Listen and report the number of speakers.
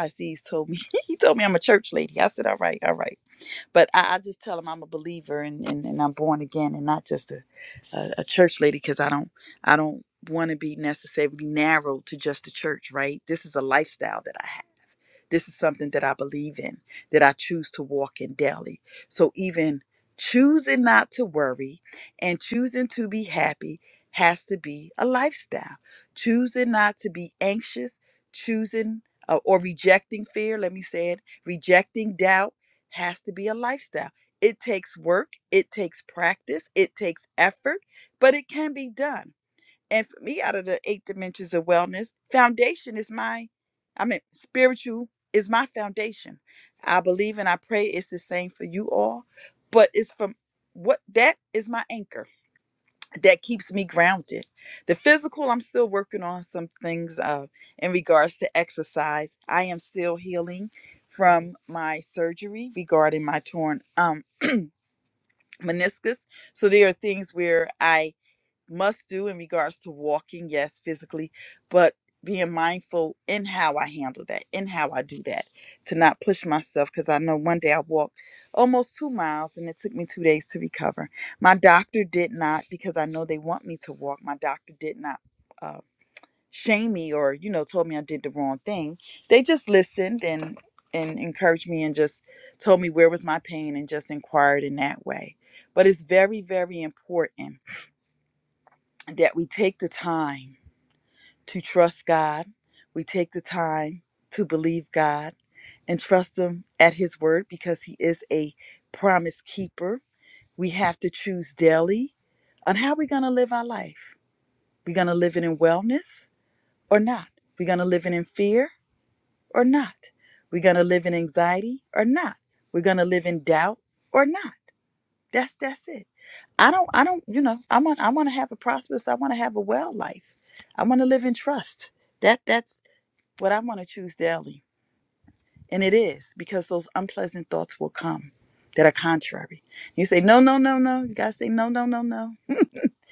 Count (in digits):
1